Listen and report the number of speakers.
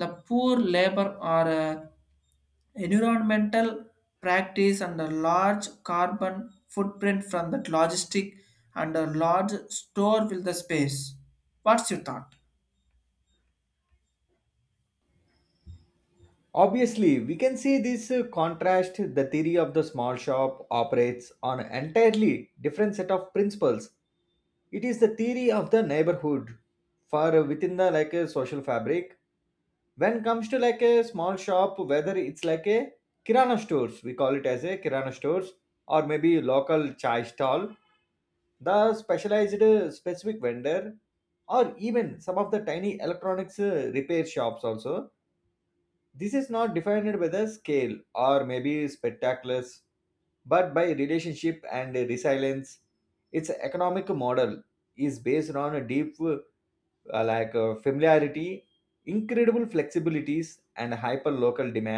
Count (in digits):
2